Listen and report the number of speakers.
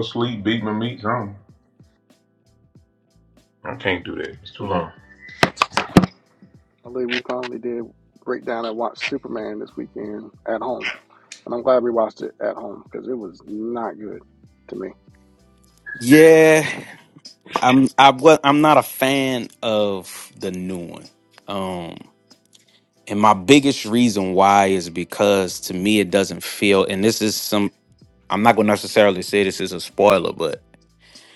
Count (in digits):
3